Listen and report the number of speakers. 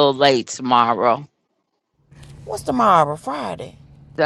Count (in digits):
2